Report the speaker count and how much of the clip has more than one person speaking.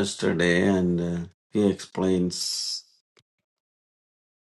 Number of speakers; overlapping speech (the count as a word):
one, no overlap